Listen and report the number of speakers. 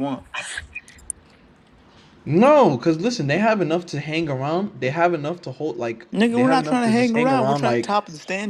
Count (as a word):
two